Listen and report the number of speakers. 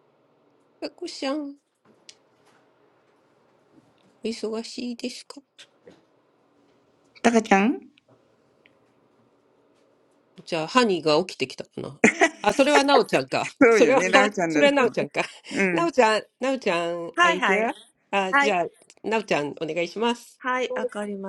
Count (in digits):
3